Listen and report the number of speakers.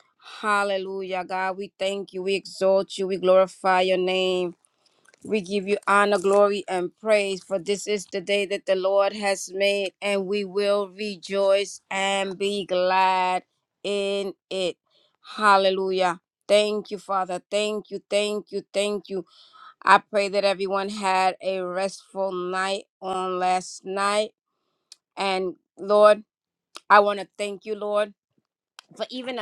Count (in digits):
1